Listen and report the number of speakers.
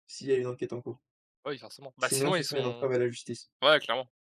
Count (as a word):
two